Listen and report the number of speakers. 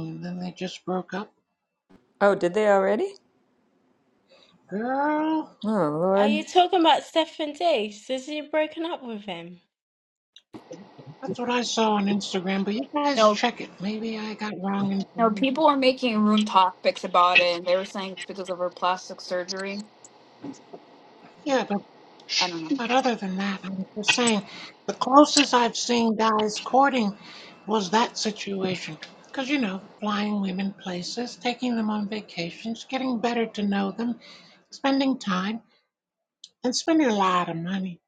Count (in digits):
4